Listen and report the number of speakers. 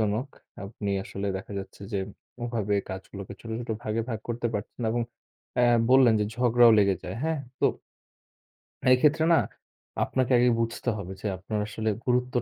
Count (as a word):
one